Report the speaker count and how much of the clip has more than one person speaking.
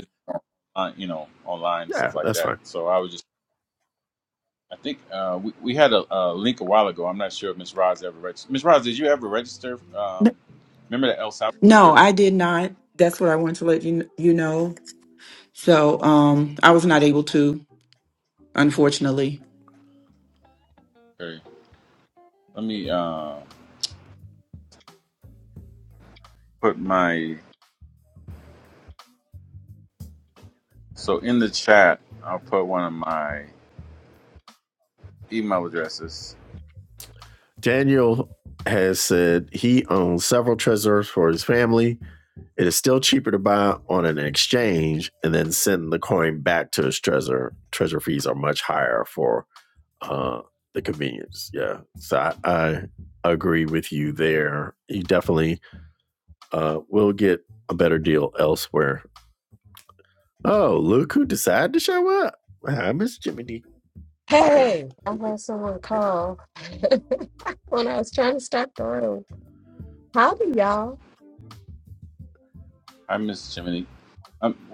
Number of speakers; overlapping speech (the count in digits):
4, about 1%